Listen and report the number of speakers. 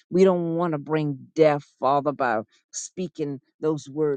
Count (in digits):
1